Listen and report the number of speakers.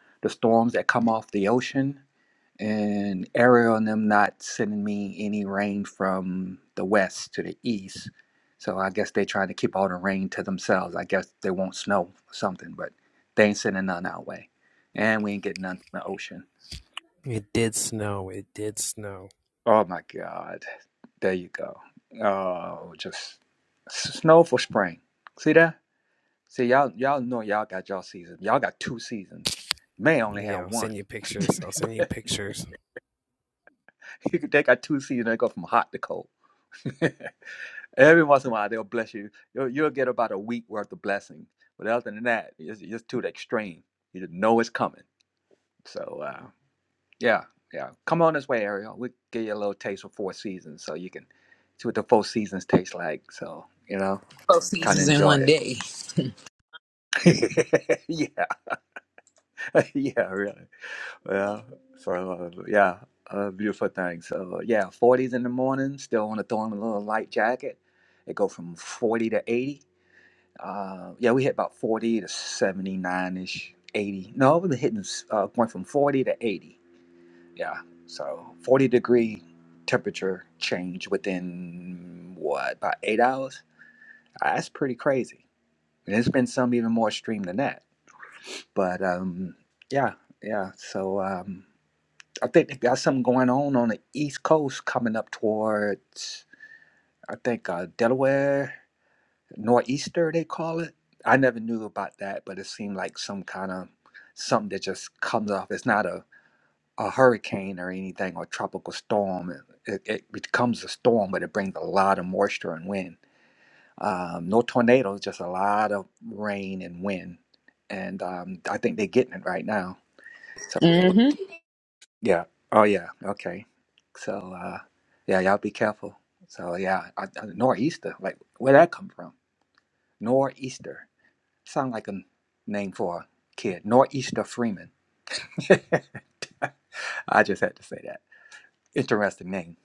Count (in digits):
3